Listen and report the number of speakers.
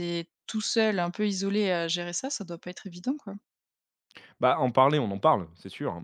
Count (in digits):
2